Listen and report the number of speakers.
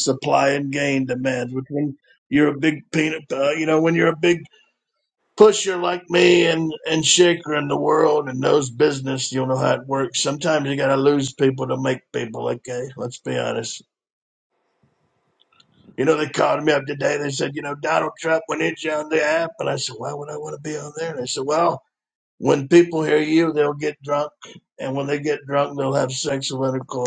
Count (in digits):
1